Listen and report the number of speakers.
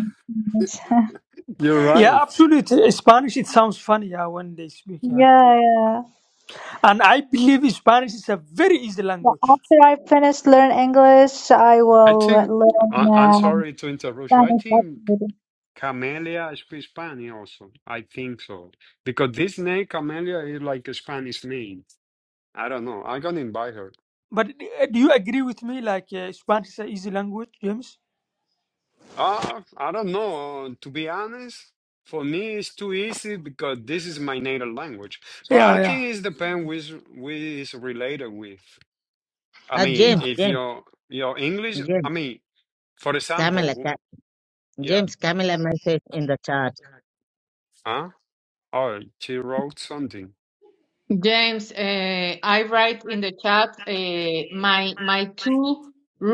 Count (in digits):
5